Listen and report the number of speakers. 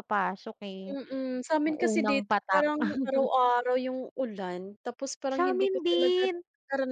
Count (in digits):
2